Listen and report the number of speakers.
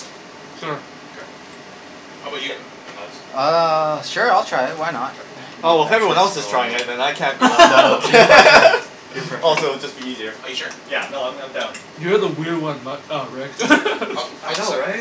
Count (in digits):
4